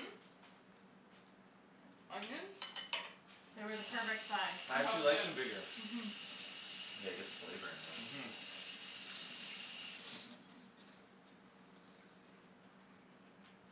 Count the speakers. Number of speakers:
4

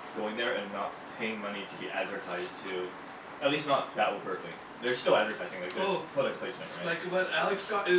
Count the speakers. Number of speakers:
2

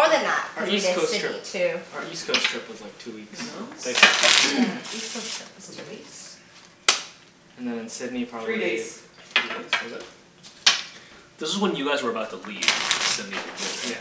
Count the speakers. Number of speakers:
4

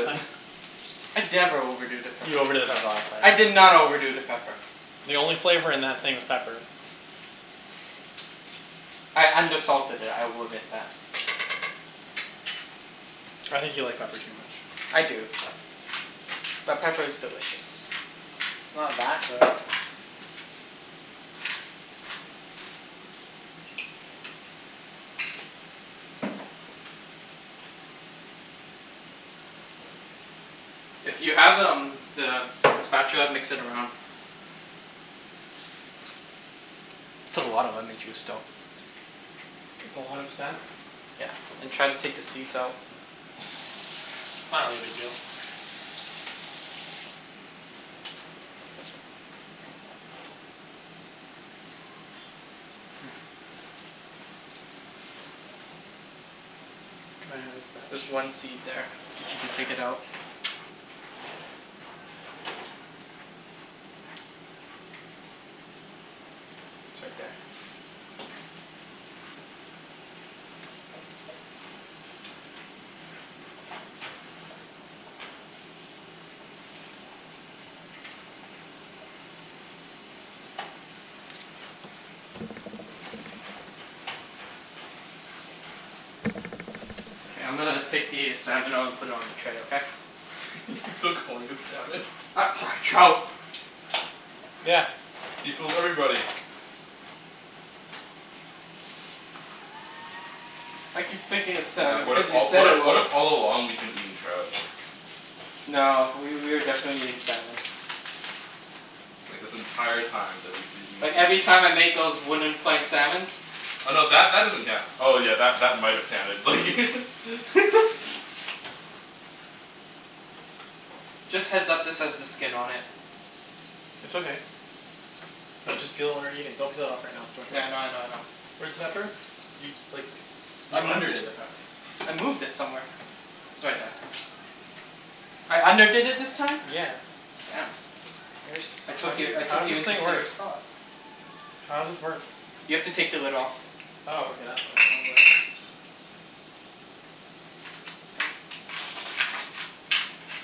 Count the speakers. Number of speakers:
3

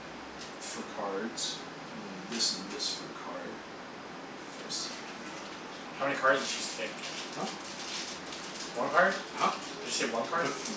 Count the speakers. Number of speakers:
2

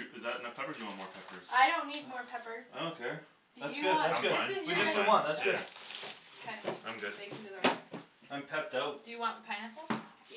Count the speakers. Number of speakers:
4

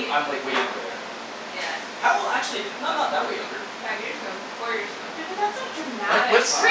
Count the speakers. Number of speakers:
3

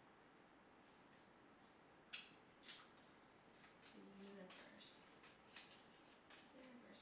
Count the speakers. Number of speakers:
1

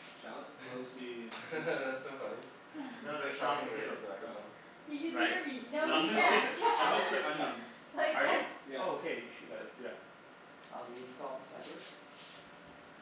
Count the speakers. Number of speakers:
4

